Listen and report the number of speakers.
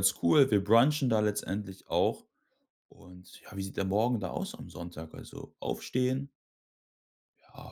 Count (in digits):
1